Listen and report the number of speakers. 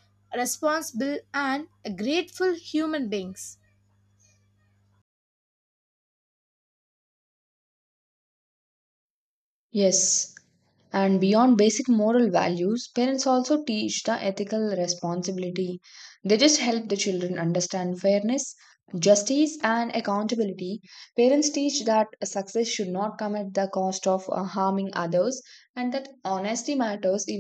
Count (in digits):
2